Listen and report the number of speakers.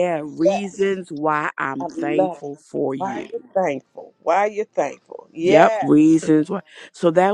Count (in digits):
2